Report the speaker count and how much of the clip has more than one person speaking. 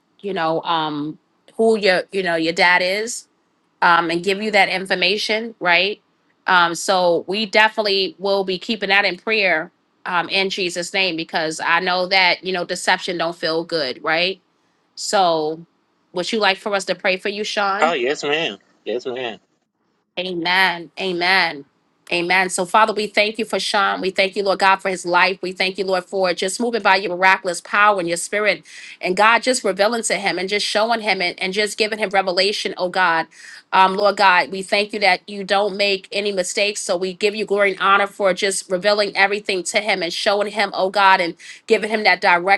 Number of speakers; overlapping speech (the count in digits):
2, under 1%